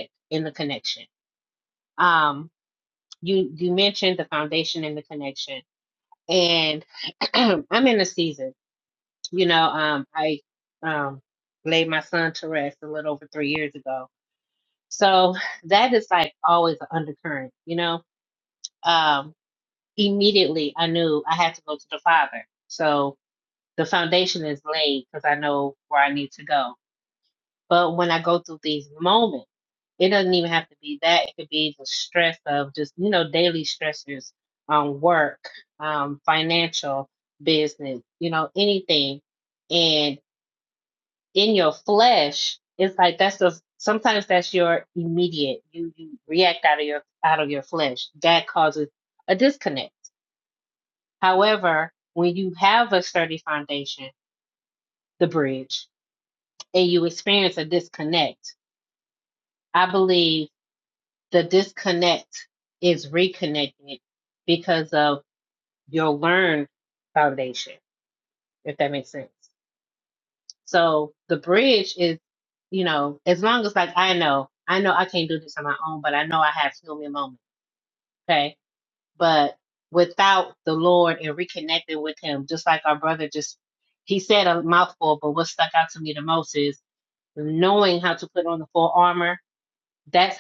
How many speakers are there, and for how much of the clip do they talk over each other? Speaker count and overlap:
1, no overlap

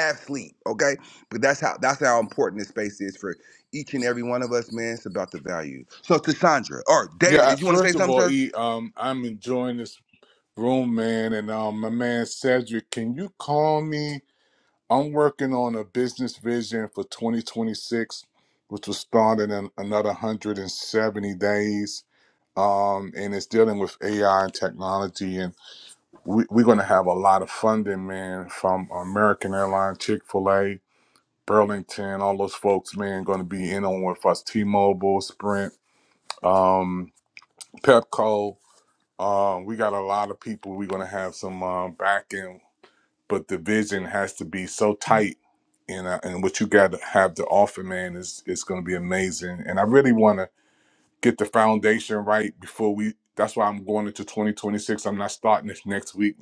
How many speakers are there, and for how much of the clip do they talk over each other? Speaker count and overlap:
2, about 2%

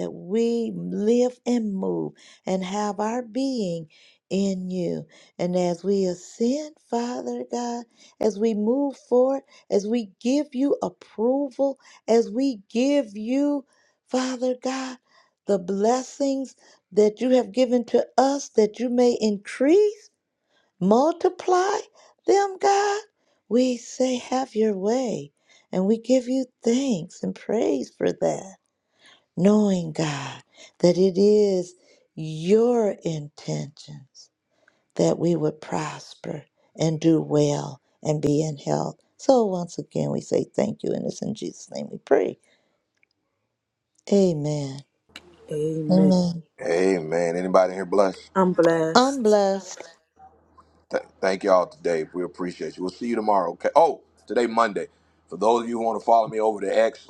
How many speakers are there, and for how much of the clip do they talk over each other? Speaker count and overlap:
3, about 1%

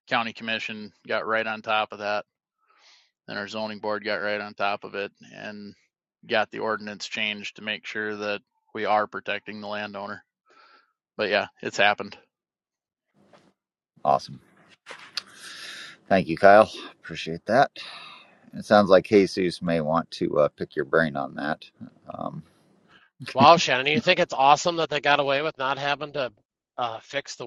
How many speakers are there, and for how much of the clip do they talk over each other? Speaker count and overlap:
3, no overlap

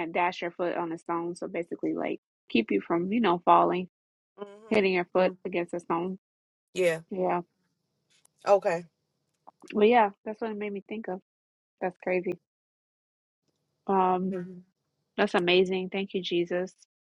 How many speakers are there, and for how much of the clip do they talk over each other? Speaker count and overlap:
2, about 1%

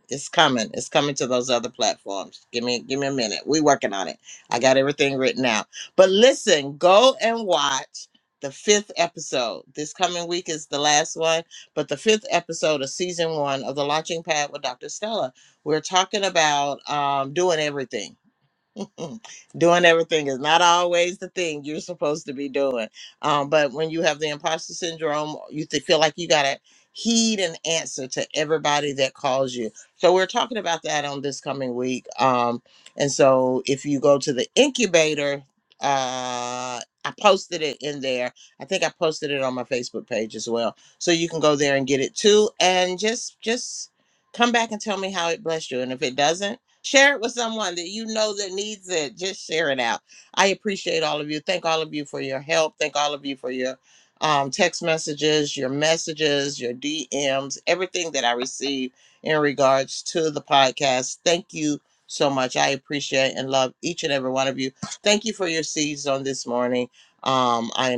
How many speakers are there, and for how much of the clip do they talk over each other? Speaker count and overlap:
1, no overlap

